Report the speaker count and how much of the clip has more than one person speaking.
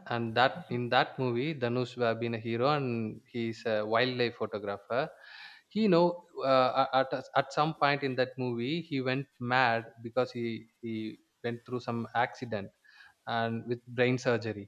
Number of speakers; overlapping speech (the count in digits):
1, no overlap